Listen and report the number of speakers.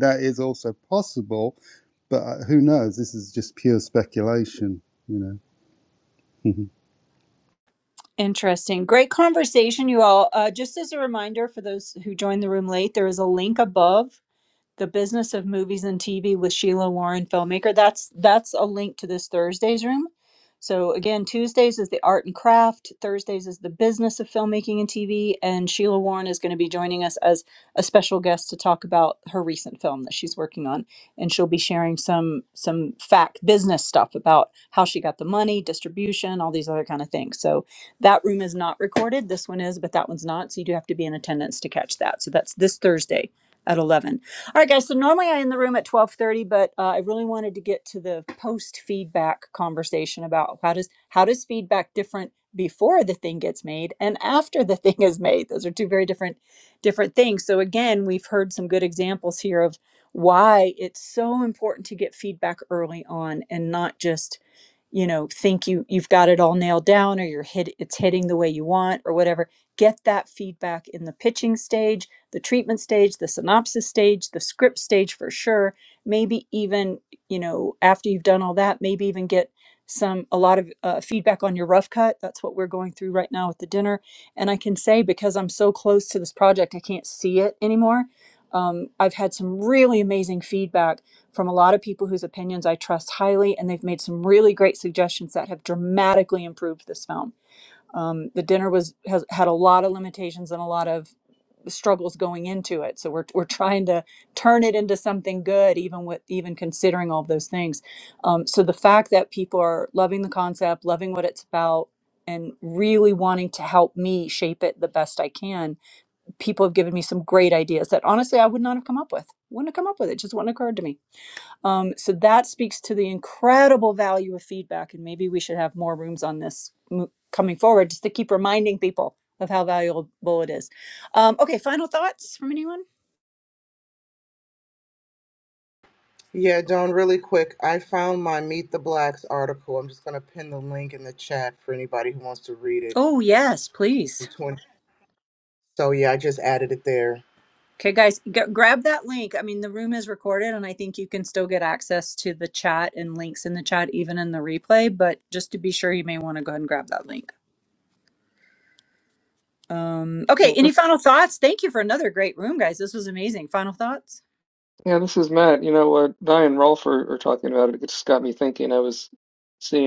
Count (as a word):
four